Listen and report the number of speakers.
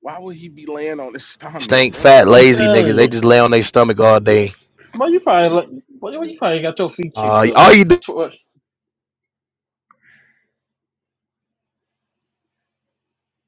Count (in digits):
3